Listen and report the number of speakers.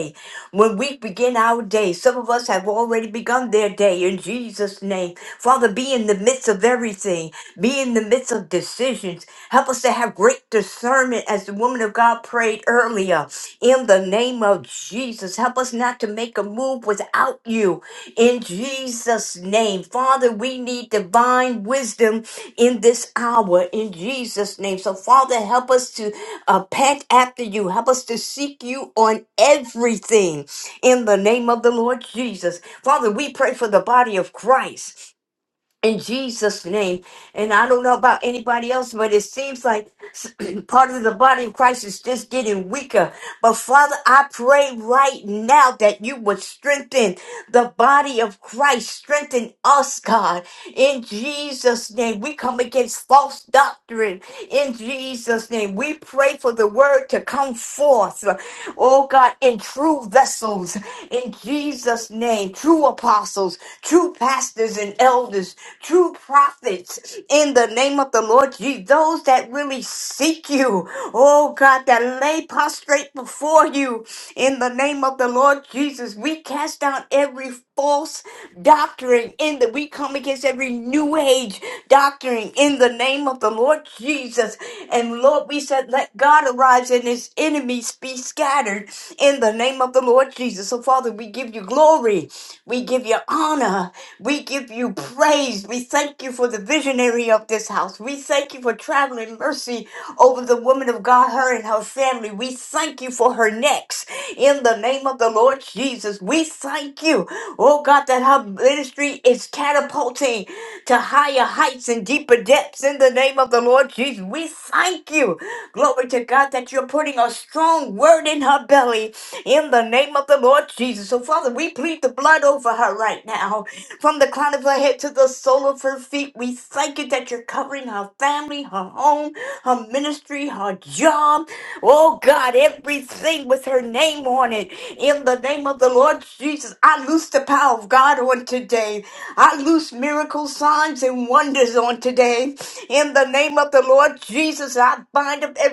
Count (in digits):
1